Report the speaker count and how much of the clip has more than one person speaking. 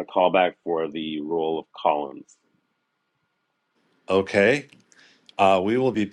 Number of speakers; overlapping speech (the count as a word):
two, no overlap